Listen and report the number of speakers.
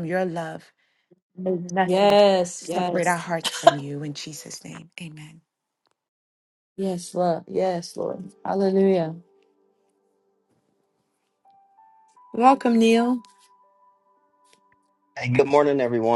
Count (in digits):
3